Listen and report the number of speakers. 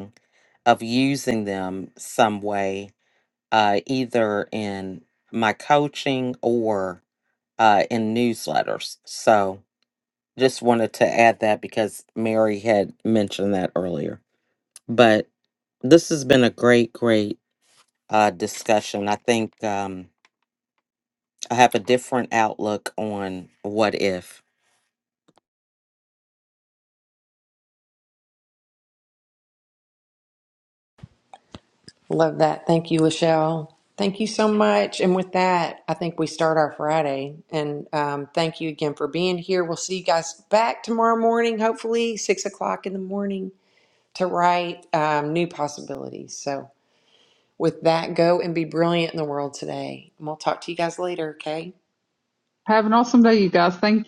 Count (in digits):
3